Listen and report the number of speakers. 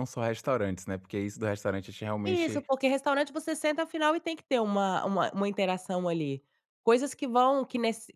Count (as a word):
two